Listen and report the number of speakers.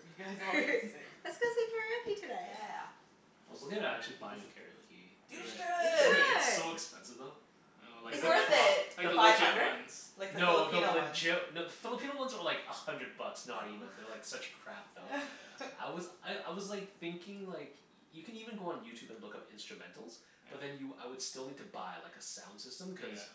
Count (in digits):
4